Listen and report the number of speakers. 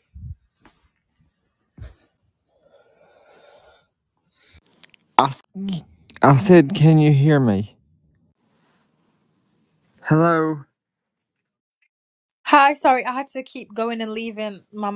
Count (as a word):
two